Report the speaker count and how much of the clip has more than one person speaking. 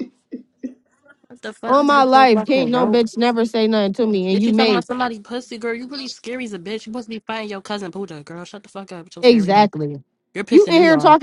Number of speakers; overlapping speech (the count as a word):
two, about 26%